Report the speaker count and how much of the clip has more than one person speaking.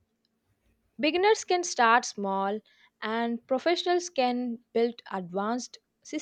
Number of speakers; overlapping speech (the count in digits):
1, no overlap